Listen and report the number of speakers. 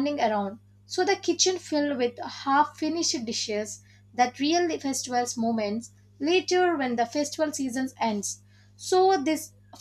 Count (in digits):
1